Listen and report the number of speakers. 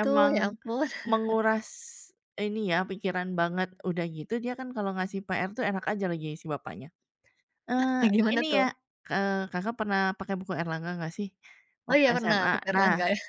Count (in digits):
2